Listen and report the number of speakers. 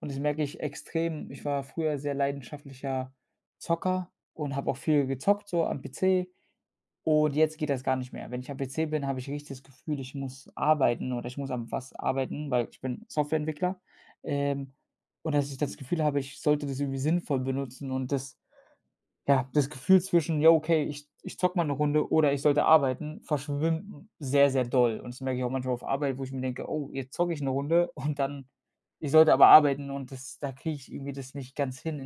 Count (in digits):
1